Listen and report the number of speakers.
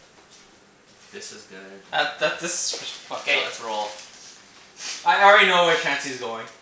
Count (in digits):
2